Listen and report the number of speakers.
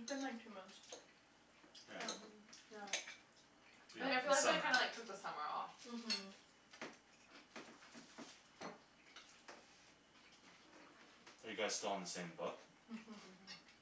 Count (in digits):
3